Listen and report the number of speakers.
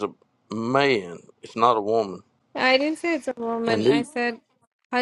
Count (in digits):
2